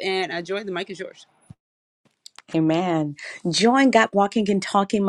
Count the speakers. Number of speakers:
two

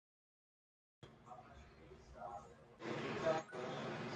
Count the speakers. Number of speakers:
zero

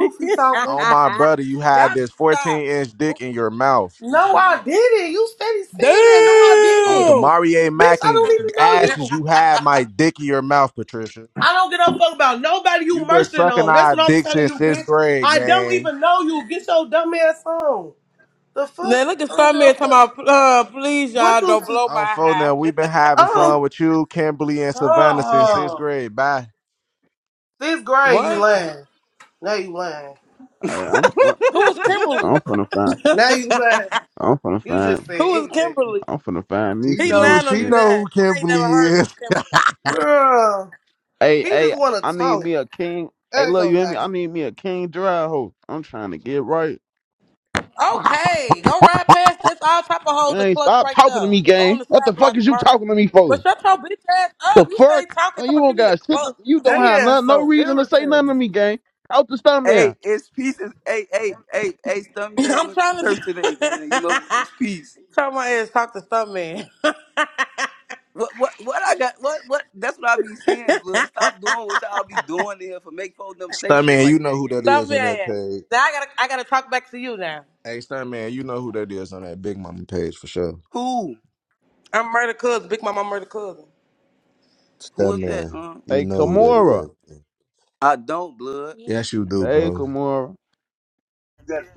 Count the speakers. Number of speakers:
five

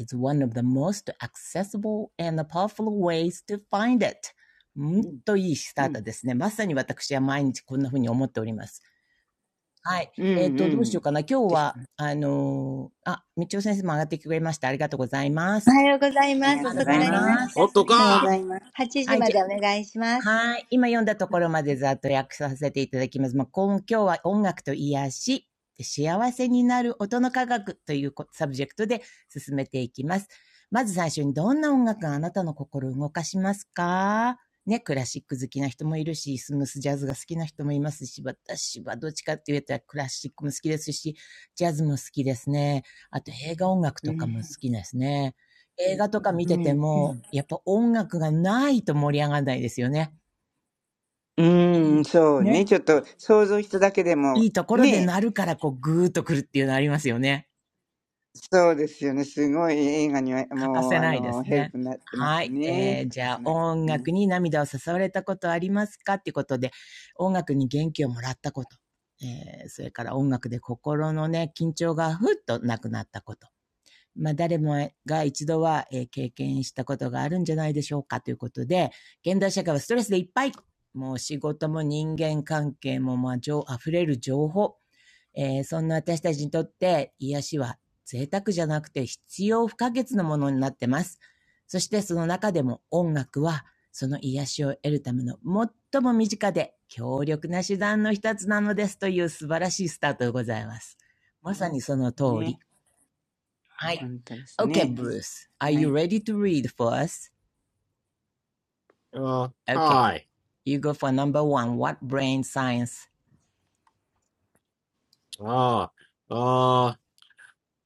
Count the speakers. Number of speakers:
four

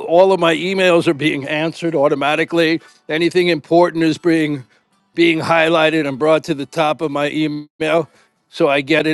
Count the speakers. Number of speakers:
one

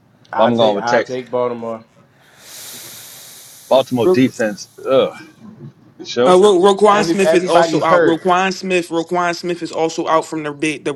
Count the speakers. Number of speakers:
three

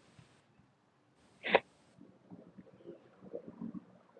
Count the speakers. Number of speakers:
zero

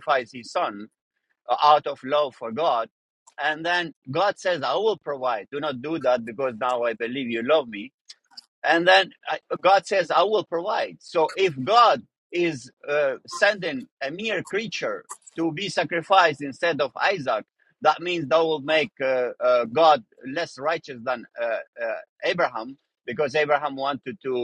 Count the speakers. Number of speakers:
one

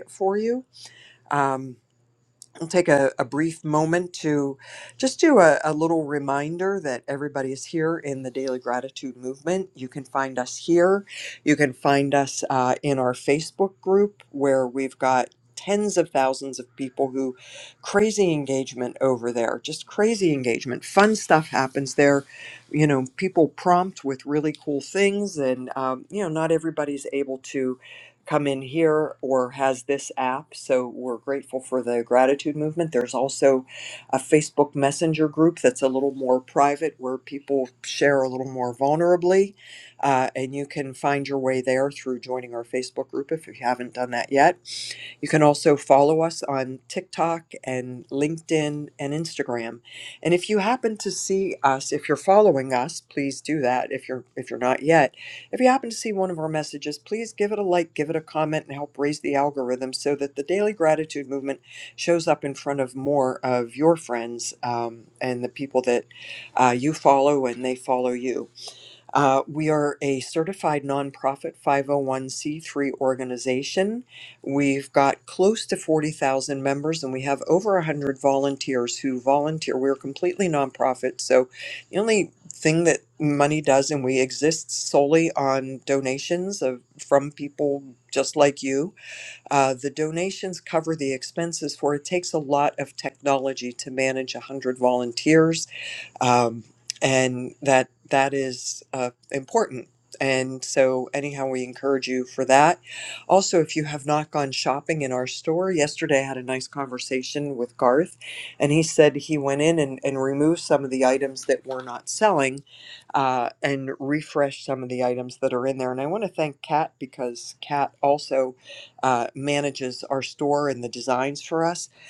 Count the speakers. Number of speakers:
one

